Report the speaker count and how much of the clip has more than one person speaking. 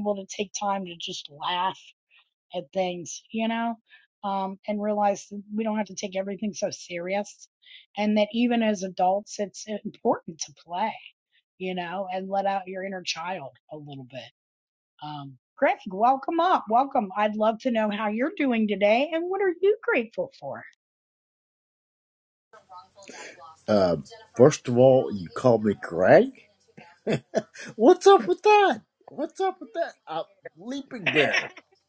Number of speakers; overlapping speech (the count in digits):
2, no overlap